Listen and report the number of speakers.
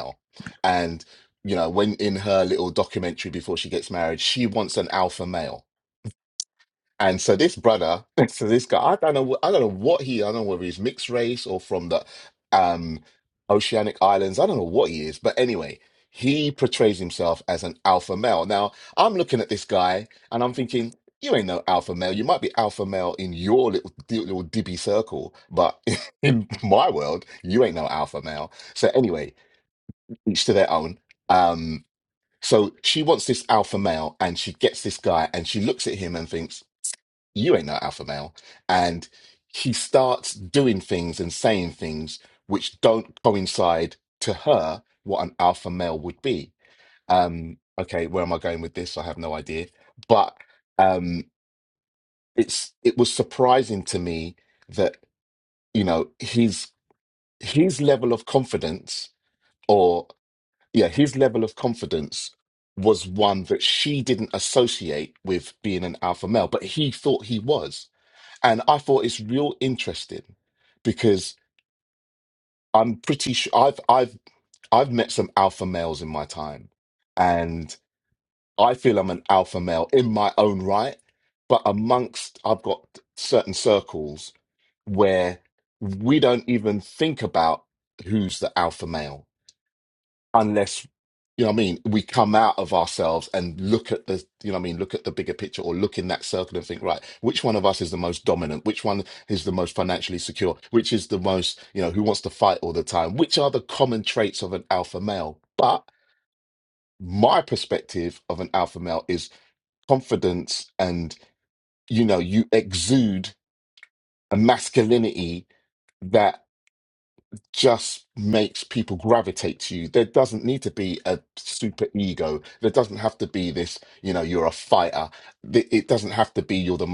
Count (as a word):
one